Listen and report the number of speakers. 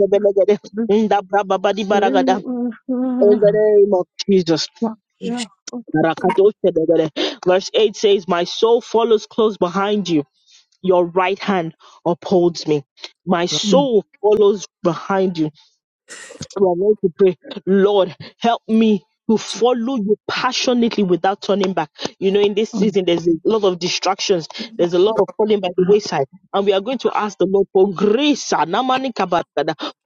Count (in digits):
2